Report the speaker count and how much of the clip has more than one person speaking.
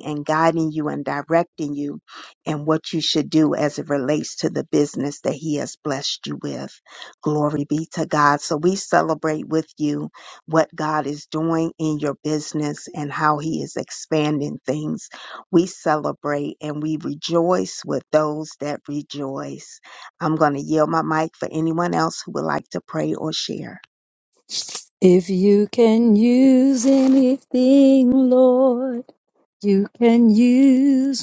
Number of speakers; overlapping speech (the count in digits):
2, no overlap